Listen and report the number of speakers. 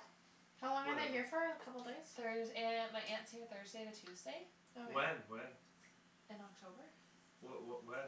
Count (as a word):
three